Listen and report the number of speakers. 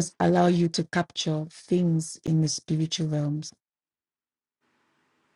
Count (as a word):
one